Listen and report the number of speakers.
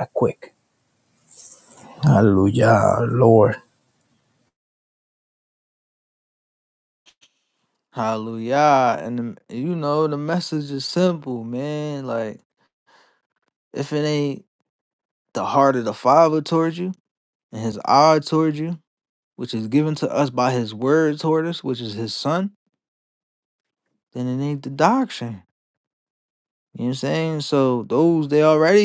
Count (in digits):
2